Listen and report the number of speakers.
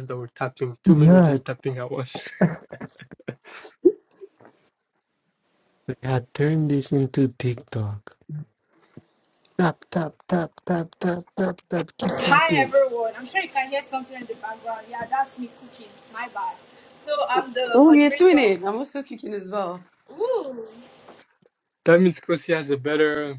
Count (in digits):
4